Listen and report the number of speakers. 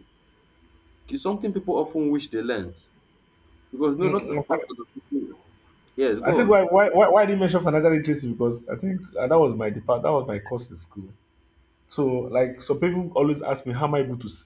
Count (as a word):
two